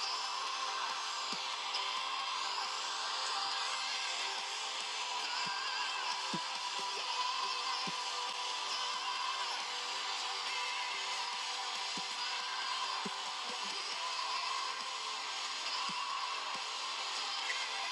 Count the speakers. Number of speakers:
0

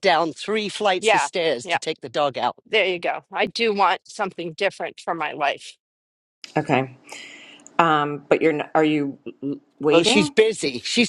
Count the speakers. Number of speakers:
3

